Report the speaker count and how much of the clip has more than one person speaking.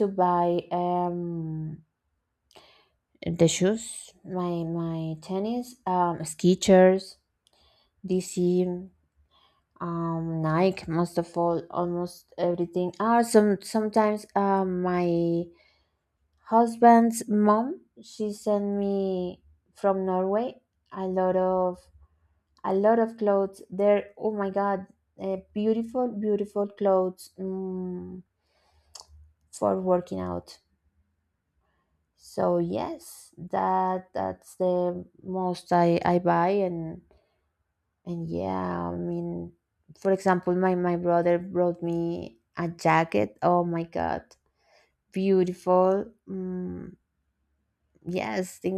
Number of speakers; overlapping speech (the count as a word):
one, no overlap